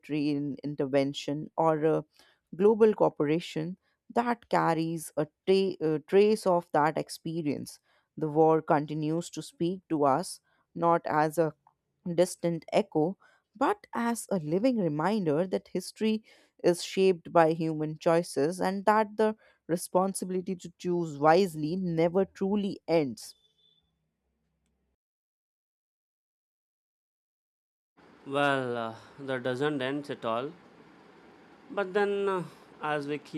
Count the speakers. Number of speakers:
2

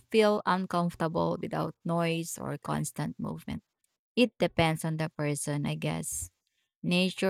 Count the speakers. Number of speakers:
1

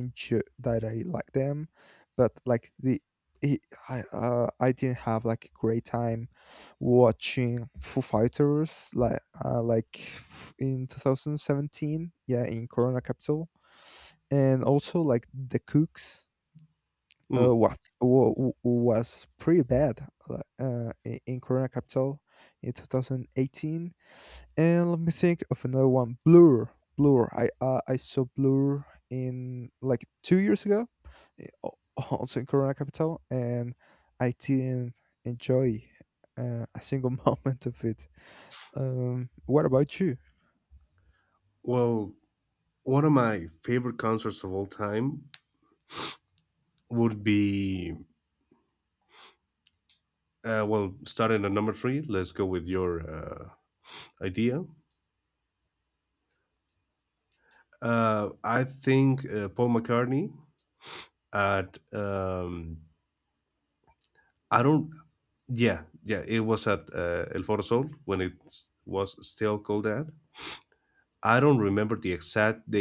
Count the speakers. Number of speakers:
2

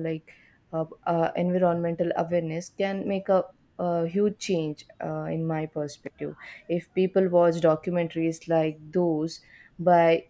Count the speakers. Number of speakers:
1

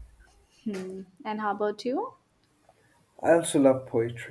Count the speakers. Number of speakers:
2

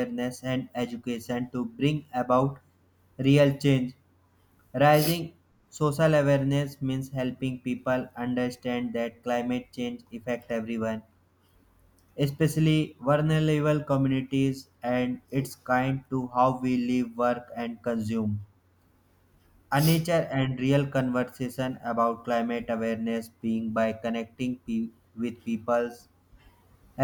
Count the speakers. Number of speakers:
1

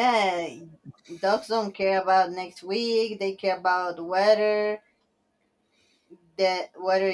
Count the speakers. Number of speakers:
1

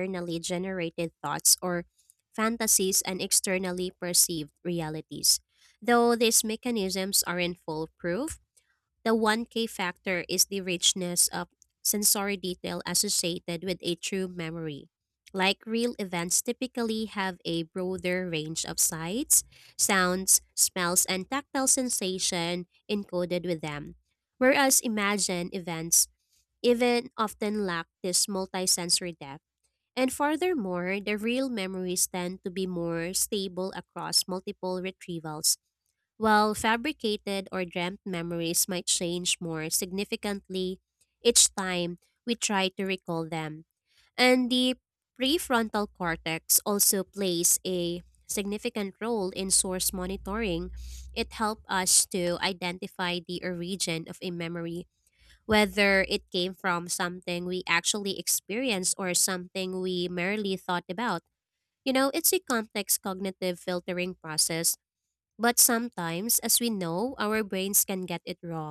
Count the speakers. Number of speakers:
1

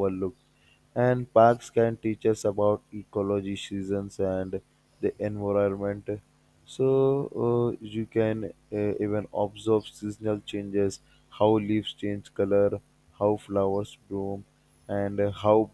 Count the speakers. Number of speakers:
1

